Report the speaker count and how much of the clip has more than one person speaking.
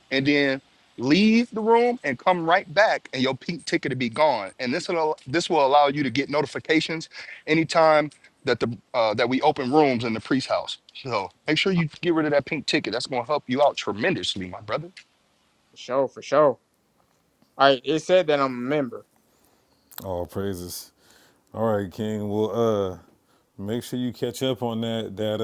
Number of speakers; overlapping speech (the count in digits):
3, no overlap